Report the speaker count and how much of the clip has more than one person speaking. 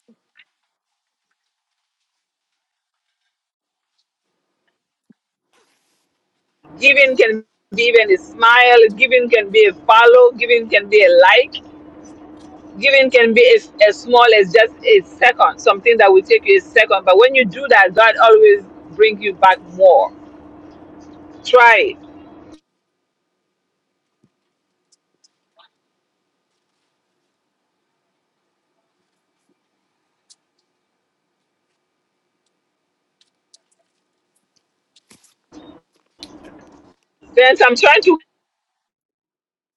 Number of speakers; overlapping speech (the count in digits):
1, no overlap